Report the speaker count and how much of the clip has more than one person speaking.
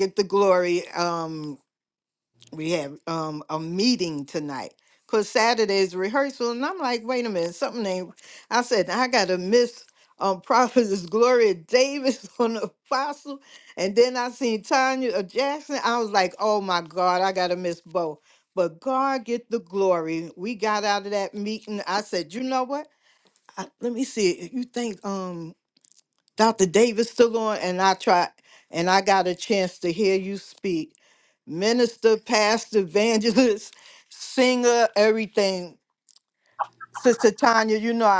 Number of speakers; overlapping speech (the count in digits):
1, no overlap